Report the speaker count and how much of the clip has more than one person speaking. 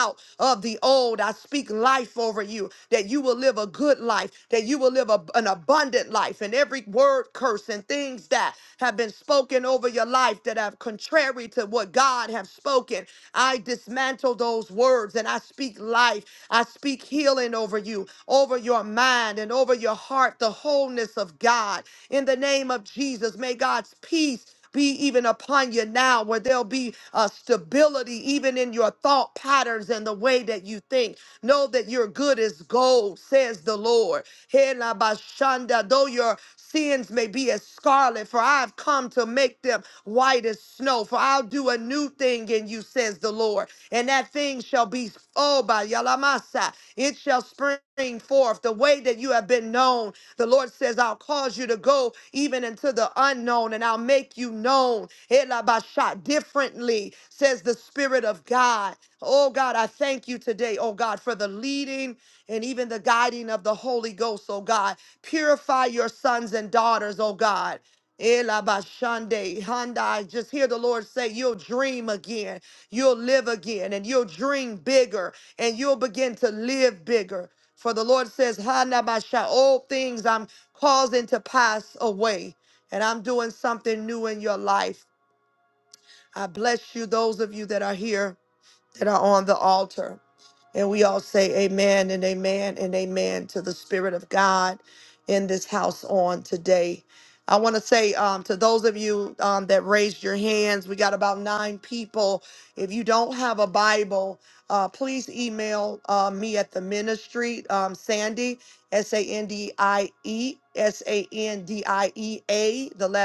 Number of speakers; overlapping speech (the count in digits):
1, no overlap